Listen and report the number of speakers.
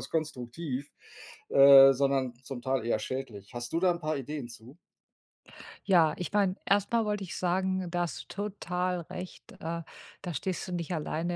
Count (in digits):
2